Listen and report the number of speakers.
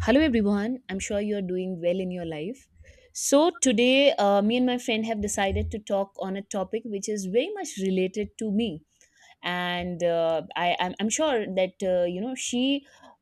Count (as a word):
one